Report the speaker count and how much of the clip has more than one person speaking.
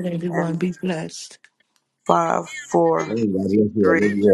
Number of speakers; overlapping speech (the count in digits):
3, about 28%